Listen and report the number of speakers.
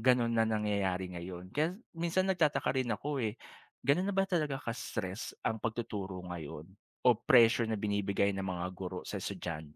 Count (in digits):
1